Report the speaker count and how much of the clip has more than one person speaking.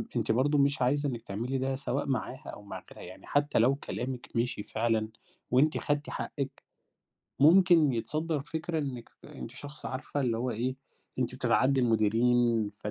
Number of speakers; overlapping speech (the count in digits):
1, no overlap